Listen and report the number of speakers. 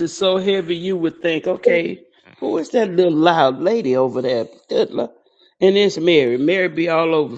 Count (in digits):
1